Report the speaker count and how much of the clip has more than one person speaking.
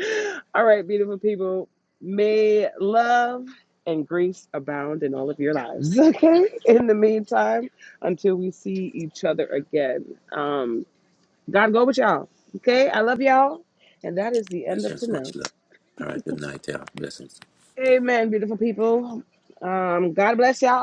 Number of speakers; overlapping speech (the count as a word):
two, about 3%